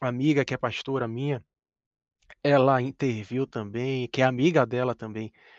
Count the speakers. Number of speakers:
1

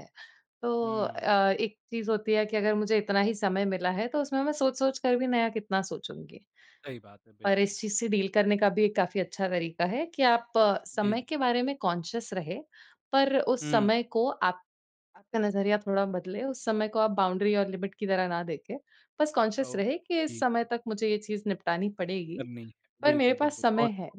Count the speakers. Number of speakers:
2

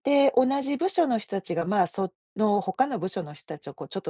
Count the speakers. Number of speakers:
1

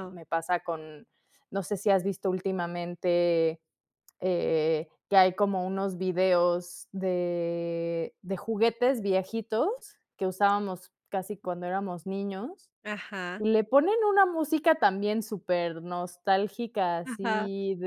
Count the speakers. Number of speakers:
2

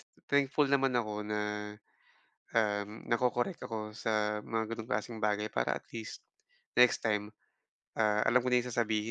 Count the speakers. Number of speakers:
1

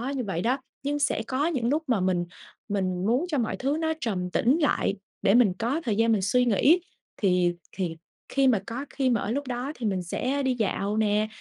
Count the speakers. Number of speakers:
1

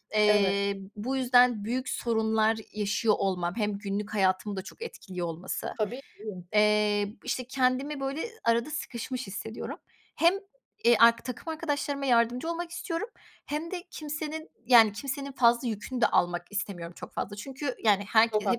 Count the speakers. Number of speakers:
2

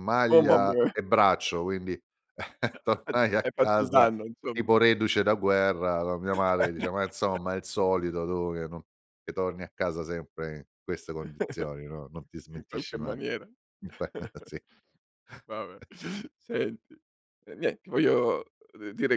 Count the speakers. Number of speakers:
2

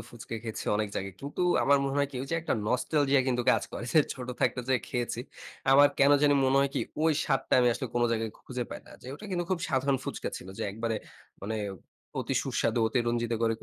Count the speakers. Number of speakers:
1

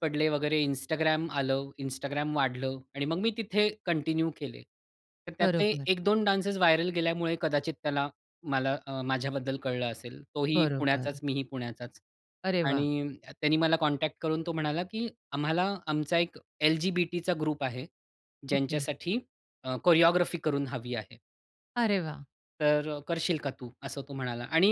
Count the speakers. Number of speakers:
2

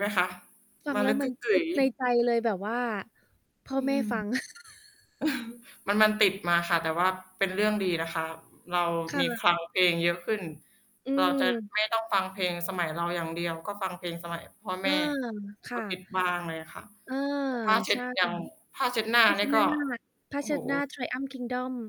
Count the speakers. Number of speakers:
2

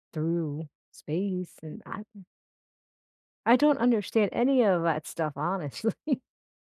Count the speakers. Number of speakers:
1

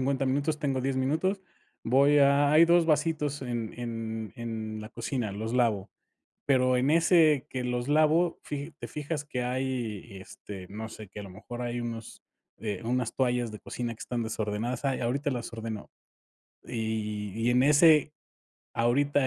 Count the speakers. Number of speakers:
1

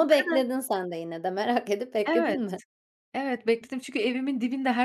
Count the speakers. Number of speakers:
2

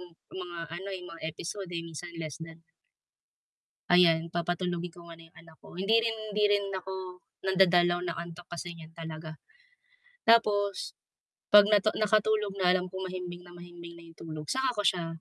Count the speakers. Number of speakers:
1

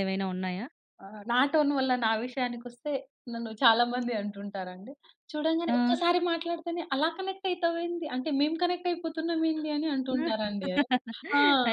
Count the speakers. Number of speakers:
2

